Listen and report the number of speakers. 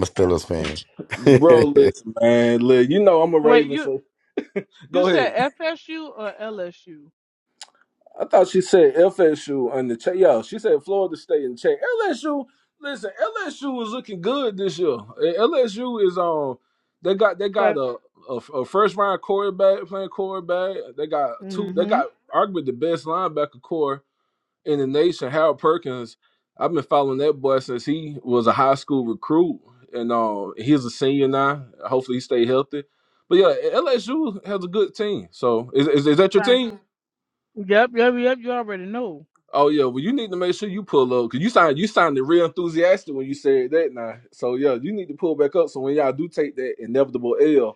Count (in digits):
3